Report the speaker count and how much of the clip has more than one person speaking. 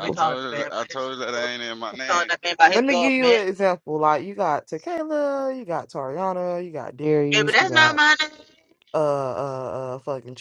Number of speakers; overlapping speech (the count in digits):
3, about 26%